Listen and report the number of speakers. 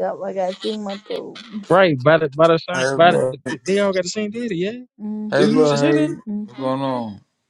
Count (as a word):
three